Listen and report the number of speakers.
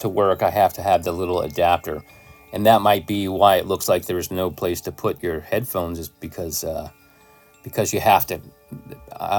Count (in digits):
1